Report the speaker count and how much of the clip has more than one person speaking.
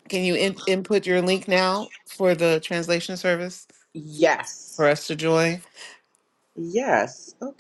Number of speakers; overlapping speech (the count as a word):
two, no overlap